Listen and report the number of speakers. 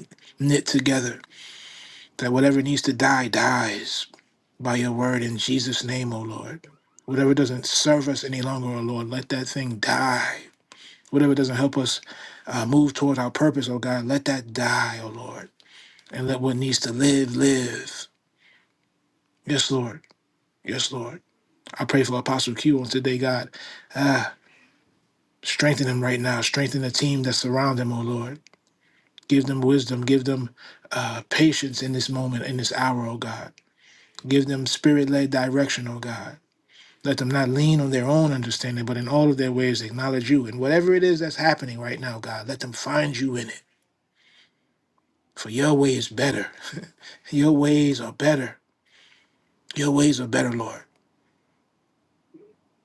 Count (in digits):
1